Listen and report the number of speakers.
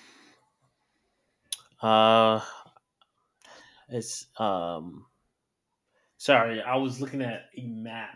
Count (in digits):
1